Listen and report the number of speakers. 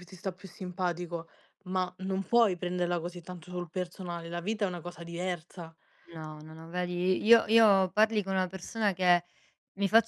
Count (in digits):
2